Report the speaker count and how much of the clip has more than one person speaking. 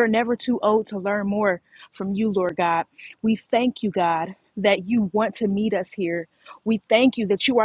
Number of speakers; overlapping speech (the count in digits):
1, no overlap